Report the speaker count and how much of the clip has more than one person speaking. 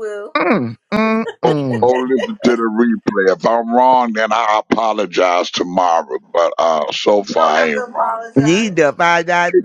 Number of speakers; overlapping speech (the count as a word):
three, about 17%